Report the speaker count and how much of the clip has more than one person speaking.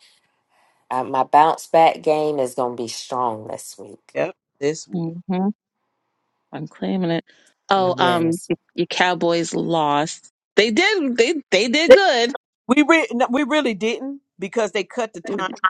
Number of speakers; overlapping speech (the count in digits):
3, about 5%